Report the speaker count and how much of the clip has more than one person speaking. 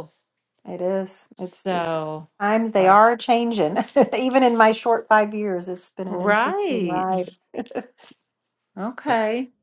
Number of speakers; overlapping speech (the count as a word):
two, about 14%